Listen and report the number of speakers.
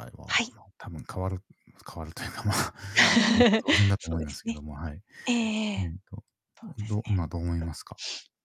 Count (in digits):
2